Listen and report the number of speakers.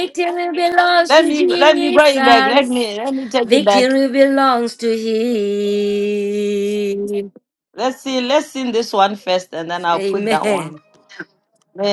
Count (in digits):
2